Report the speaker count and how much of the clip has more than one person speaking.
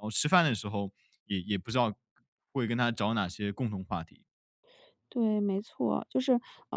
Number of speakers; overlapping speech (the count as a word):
two, no overlap